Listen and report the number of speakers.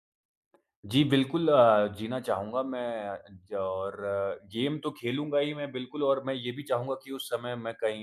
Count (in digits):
1